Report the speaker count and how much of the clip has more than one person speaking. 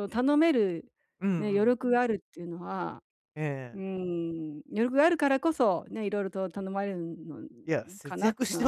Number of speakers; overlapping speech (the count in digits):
2, about 11%